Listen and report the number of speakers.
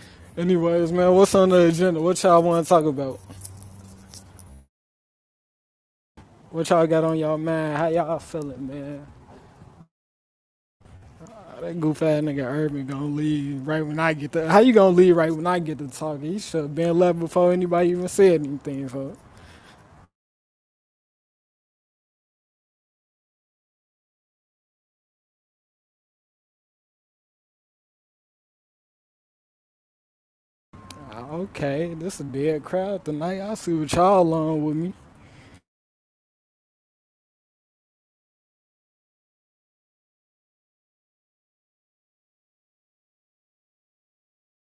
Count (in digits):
1